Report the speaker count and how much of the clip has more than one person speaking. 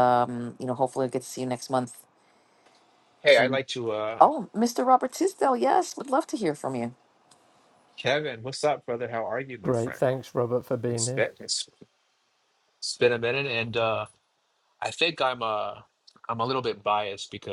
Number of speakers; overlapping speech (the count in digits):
3, about 6%